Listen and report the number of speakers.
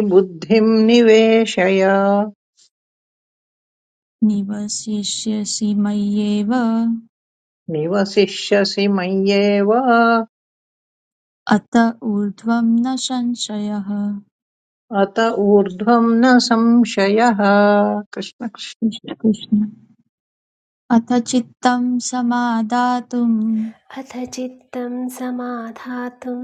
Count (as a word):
three